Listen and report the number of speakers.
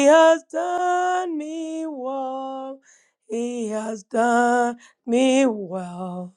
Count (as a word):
one